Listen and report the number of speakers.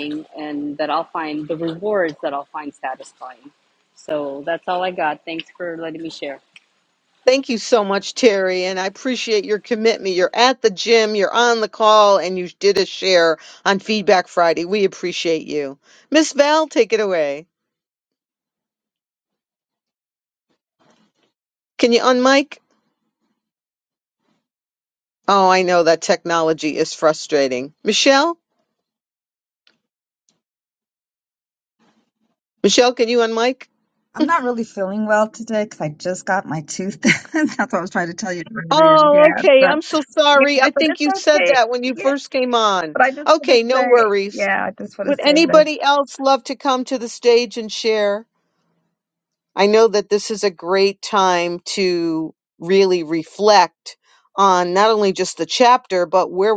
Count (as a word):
three